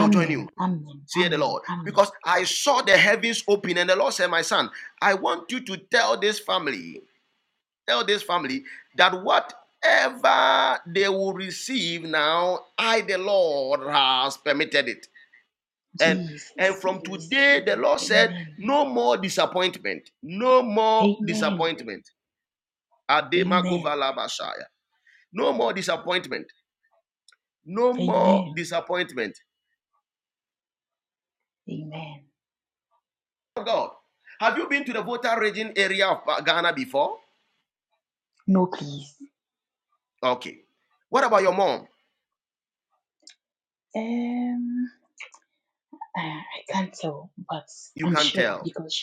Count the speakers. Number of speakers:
two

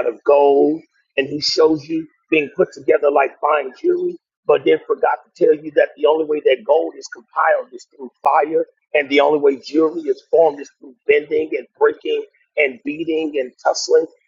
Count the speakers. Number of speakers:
one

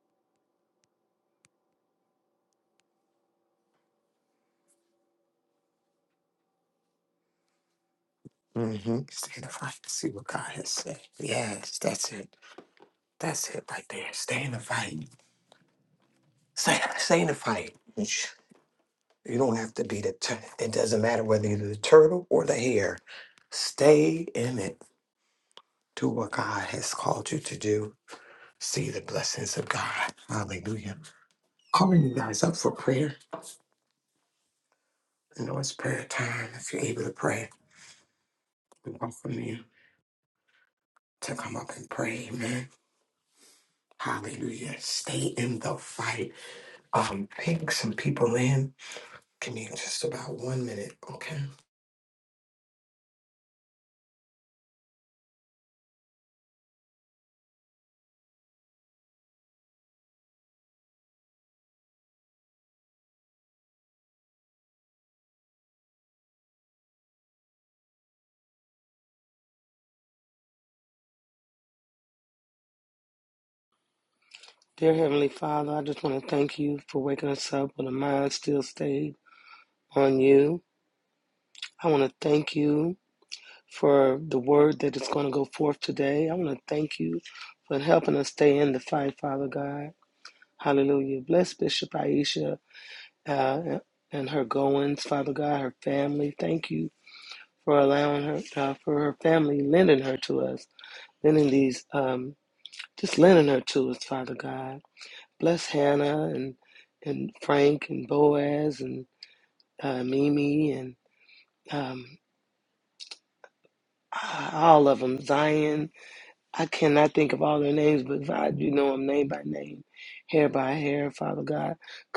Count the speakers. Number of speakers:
two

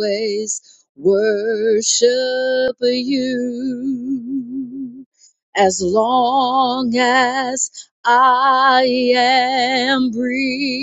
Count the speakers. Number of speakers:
one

